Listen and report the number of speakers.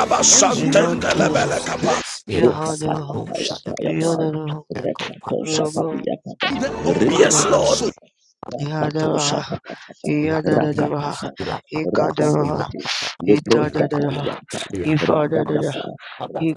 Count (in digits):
4